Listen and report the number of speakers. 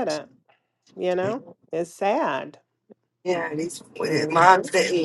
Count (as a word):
two